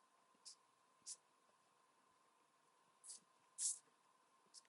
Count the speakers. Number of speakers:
0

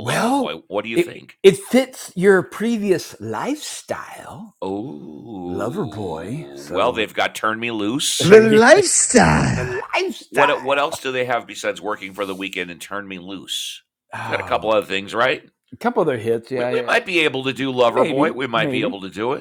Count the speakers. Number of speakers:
3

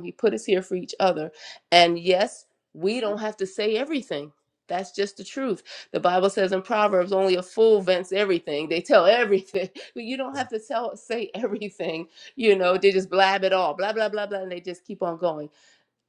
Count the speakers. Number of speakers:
1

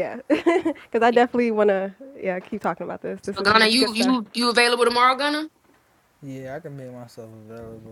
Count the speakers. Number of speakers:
3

